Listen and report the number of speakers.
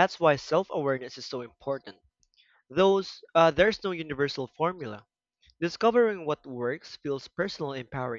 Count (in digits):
1